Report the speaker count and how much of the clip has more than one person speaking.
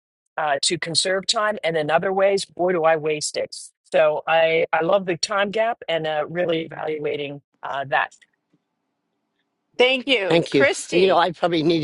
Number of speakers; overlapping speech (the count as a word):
three, about 7%